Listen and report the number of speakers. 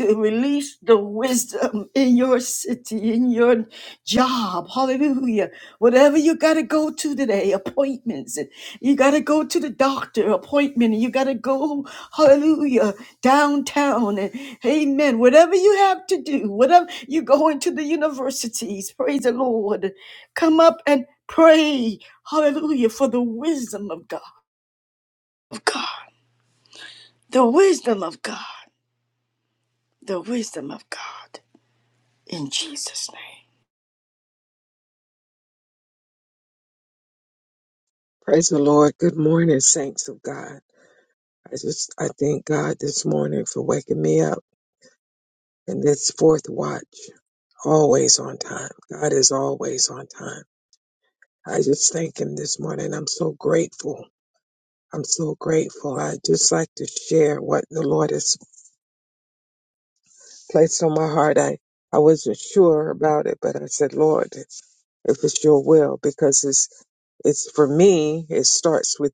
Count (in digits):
2